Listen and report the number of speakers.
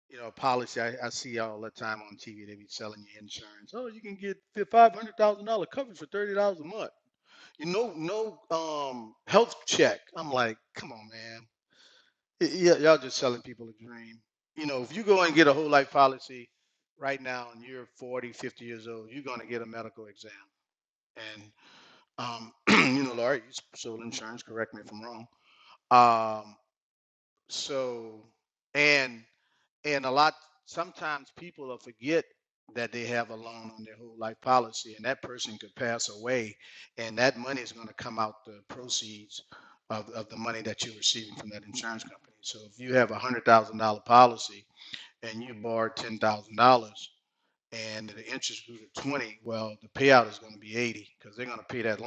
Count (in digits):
1